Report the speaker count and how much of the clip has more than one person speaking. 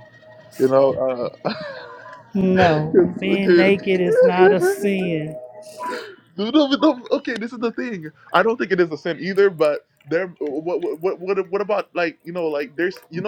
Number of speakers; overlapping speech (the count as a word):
two, about 8%